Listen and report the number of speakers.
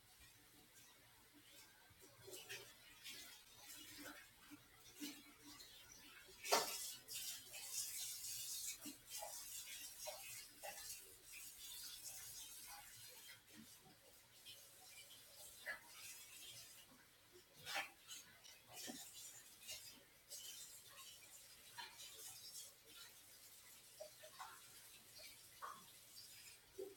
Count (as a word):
zero